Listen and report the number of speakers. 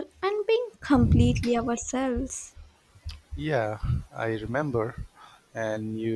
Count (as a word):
two